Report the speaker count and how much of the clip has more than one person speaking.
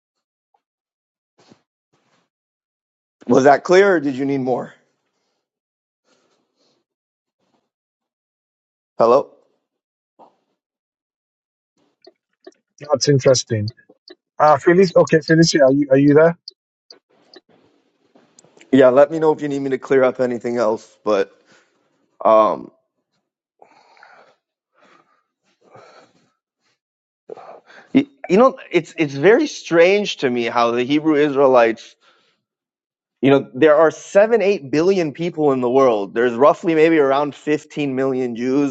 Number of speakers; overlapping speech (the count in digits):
2, no overlap